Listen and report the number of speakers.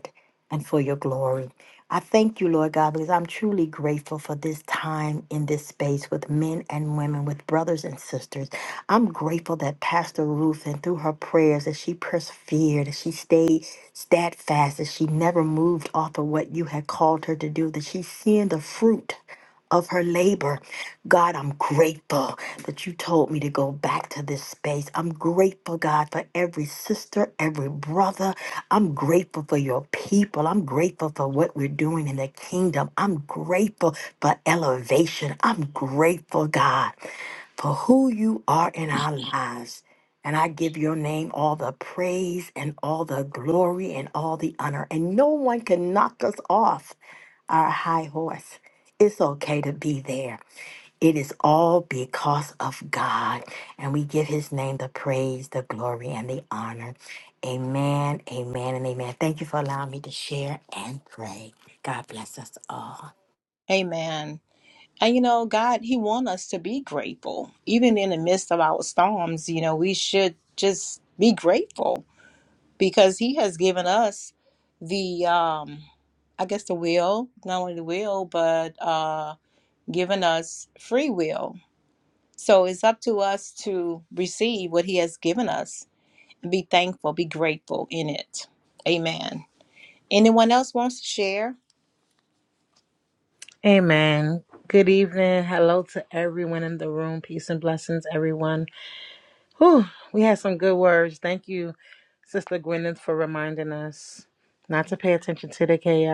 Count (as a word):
three